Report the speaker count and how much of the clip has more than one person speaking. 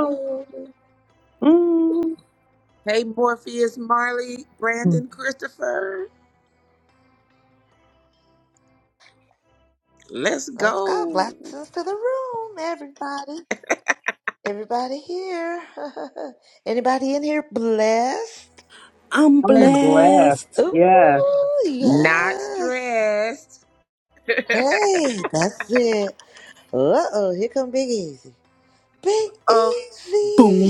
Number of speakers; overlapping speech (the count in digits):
4, about 10%